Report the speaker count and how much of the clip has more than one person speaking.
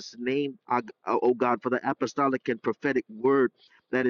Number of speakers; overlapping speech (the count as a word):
one, no overlap